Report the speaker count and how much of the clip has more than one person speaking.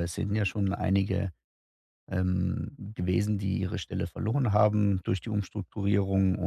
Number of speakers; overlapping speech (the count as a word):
one, no overlap